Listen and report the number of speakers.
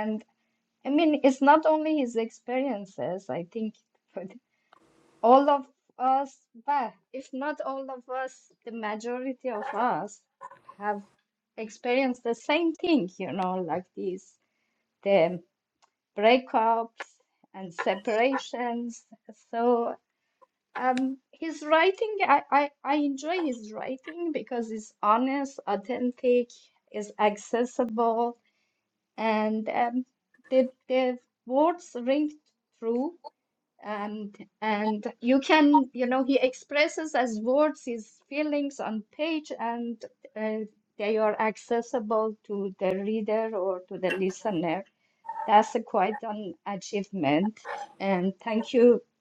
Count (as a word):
one